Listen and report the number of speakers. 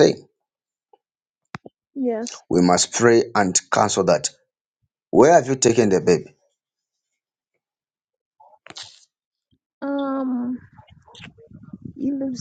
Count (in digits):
2